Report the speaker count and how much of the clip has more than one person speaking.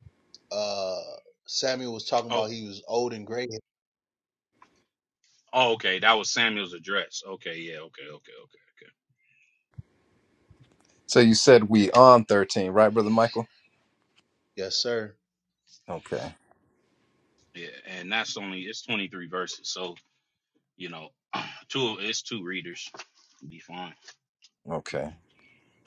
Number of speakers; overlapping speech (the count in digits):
3, about 1%